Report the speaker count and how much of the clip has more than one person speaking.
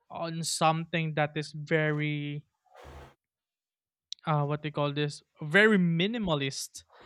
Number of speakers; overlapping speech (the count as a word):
one, no overlap